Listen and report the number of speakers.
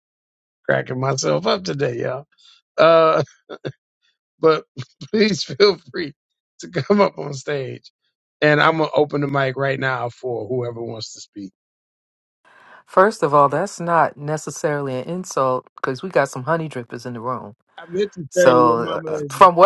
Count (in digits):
2